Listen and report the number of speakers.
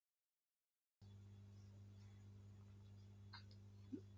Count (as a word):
zero